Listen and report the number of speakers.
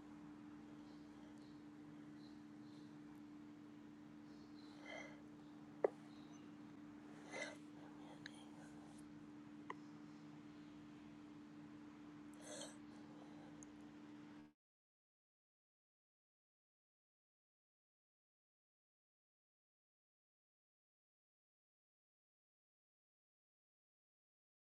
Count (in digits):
0